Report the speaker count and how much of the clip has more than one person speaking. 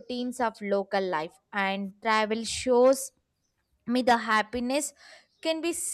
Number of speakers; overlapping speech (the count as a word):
one, no overlap